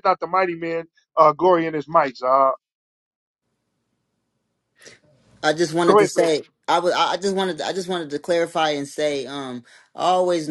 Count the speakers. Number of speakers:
2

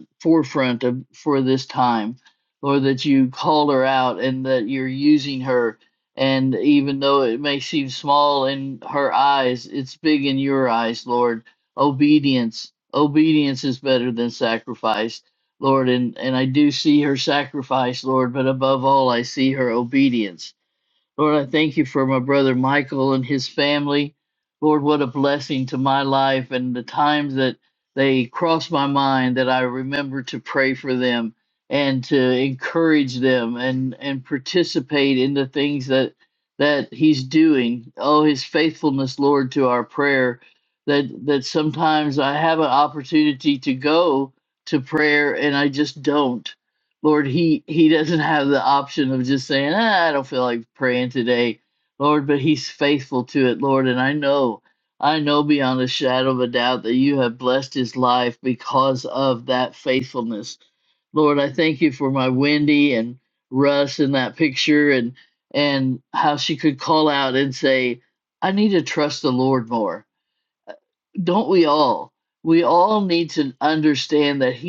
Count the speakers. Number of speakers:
1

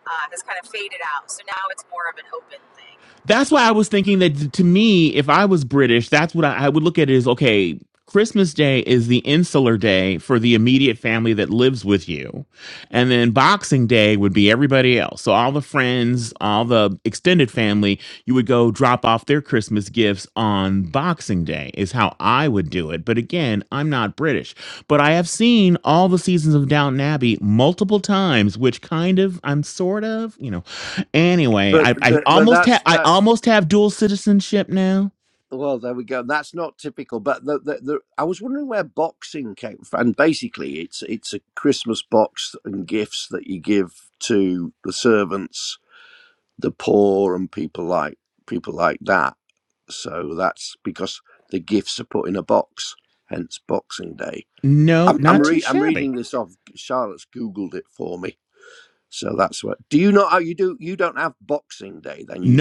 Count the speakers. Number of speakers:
3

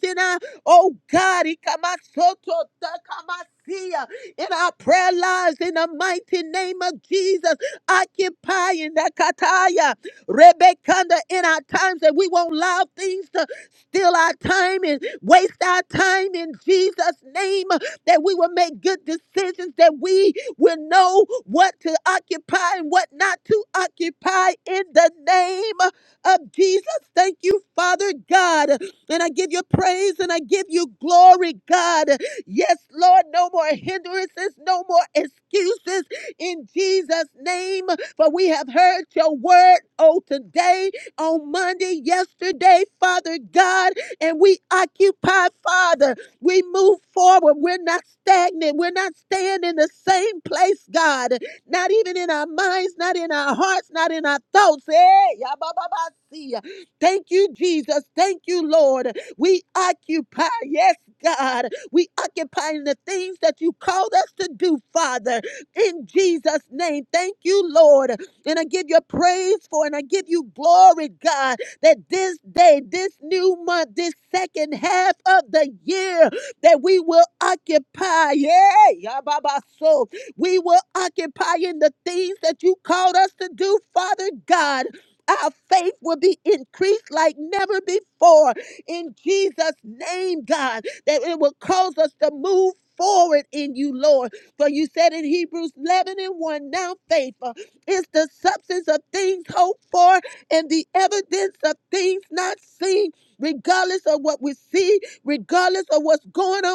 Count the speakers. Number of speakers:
1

